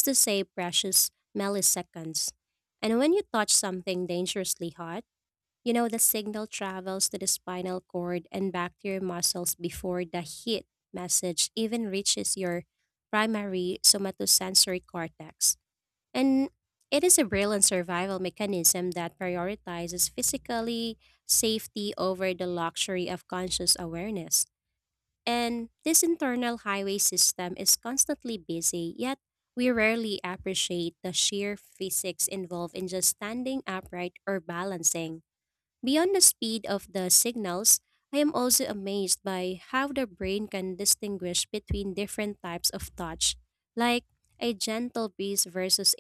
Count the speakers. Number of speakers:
1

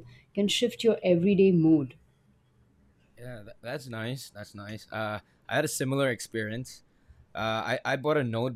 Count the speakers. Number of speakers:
2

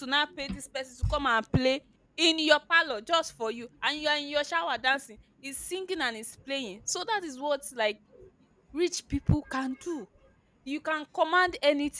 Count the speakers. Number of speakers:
1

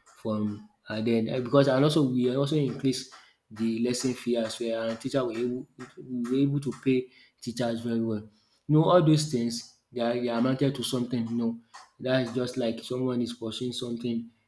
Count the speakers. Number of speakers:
1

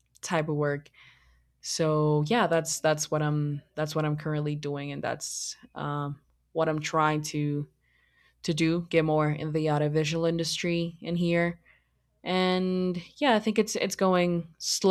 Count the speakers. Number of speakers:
1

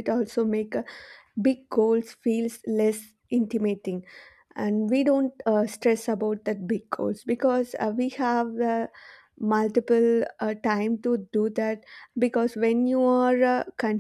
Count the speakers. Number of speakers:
1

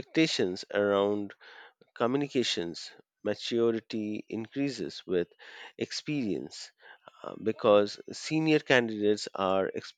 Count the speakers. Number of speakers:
1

